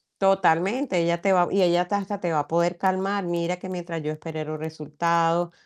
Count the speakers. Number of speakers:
one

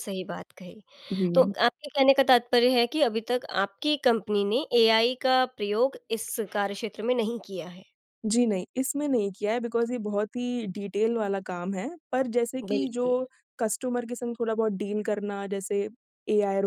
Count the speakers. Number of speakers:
two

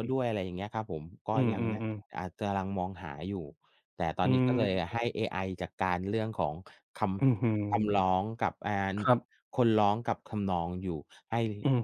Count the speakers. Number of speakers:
two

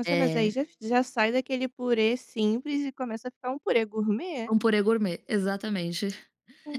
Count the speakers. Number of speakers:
two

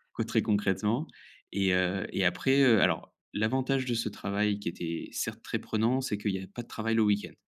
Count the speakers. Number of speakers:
one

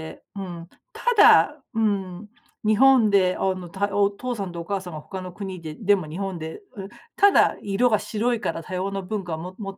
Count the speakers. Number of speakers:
one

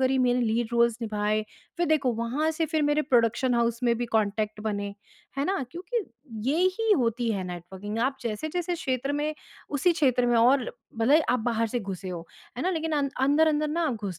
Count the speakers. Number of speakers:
one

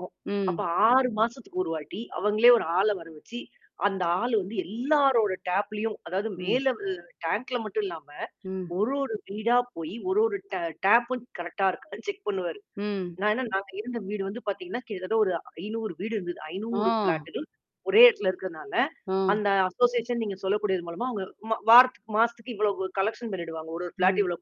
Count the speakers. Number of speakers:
two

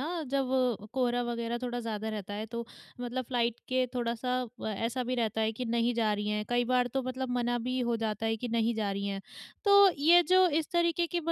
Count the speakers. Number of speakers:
one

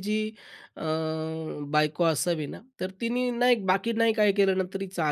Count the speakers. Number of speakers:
one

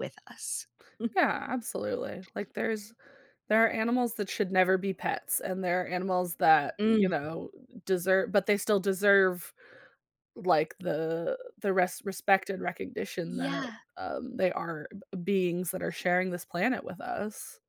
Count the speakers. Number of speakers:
two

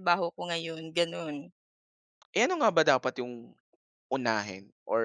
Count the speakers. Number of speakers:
two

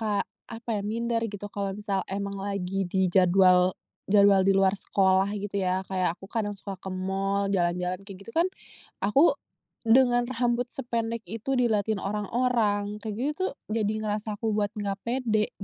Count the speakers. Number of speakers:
one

